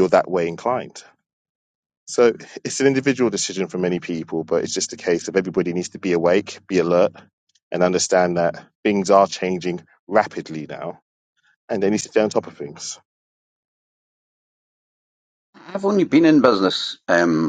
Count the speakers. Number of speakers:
two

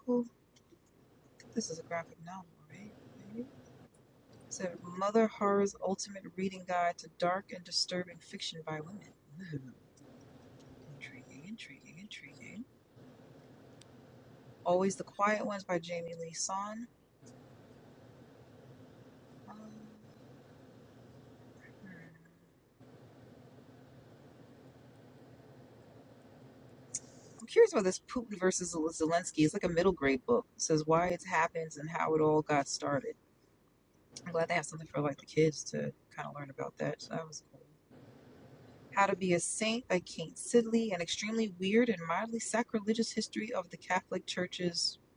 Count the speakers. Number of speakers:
one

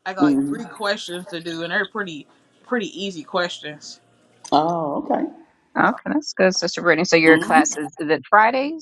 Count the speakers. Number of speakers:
three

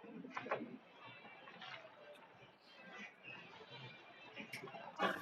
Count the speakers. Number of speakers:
zero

